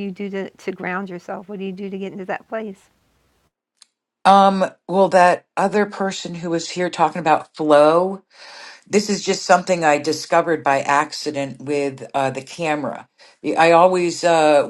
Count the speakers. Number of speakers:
2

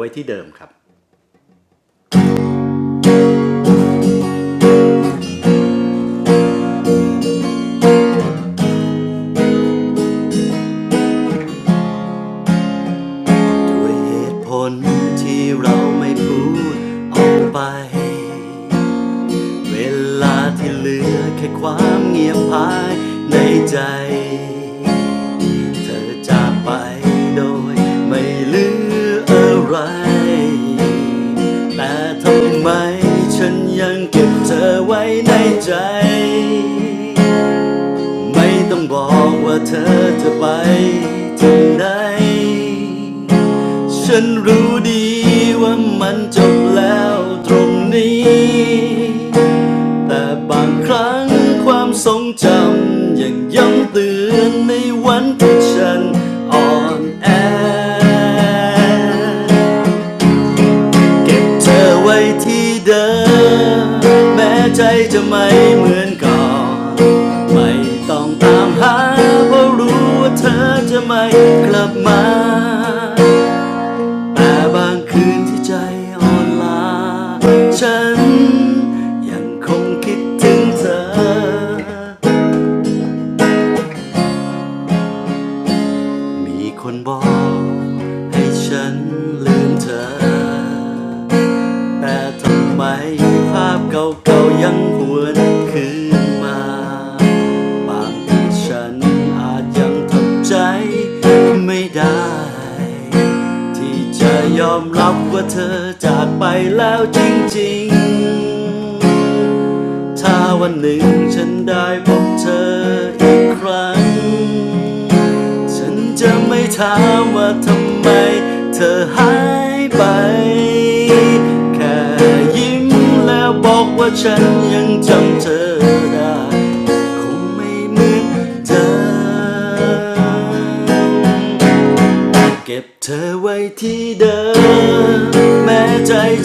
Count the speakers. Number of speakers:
1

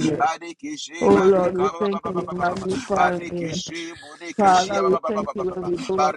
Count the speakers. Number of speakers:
2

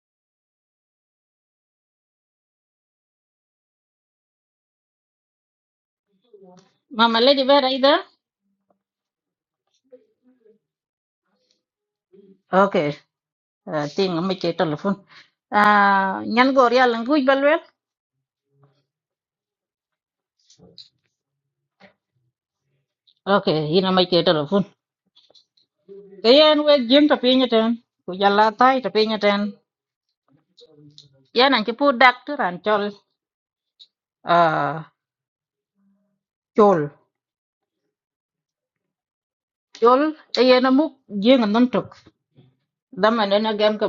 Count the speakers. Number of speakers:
1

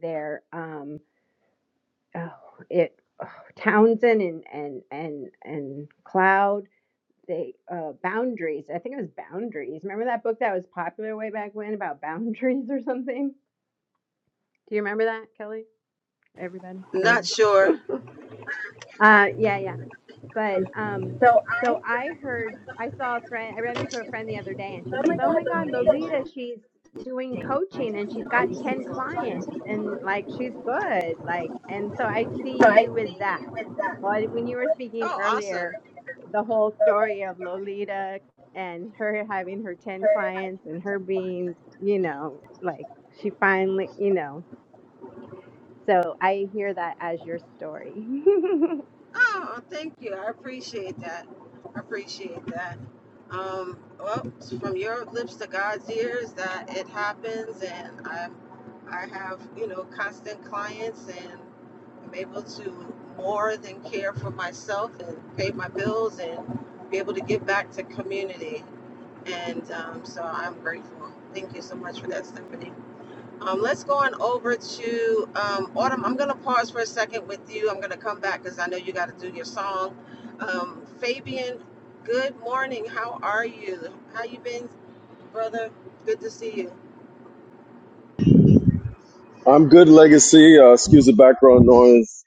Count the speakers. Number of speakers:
3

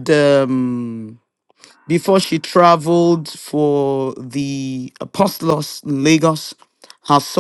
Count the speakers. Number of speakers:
1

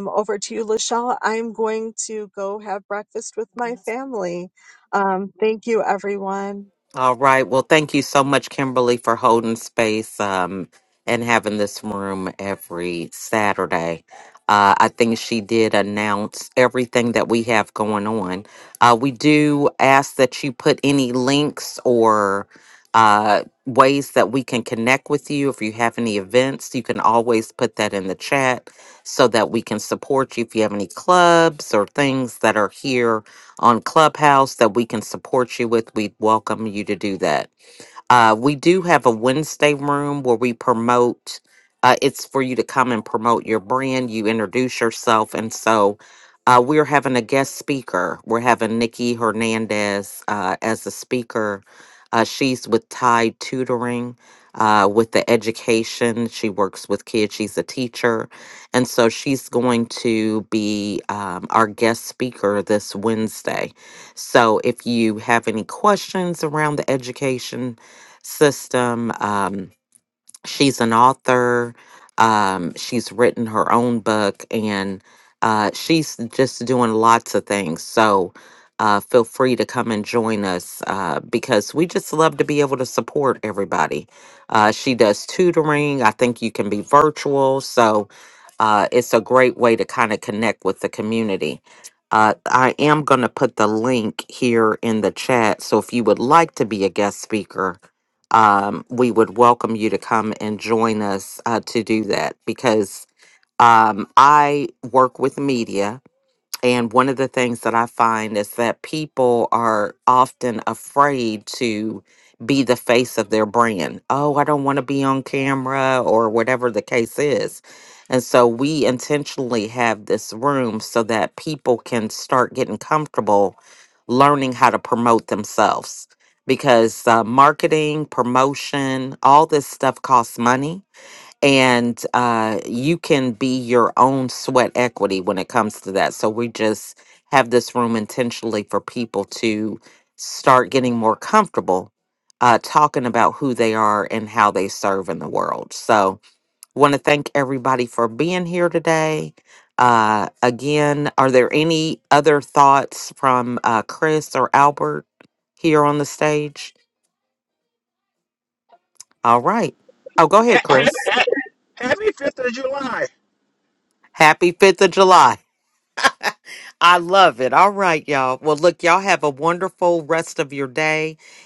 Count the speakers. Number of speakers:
3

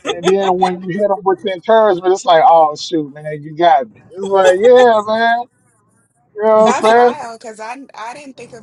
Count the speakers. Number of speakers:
2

